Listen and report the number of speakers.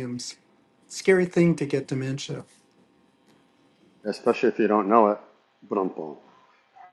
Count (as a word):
two